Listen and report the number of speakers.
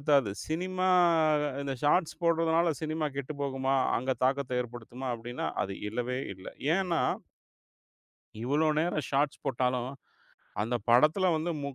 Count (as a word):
one